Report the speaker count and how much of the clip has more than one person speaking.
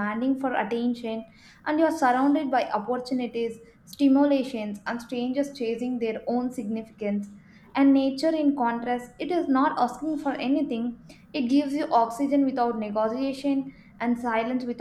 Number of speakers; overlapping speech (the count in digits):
1, no overlap